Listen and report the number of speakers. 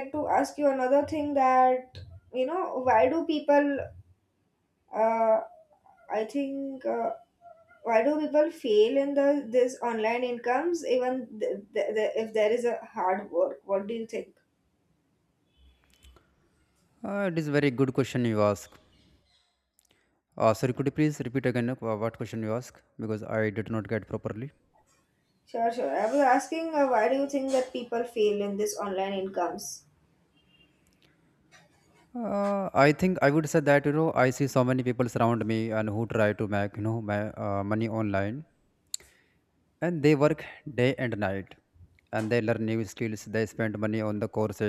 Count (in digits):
2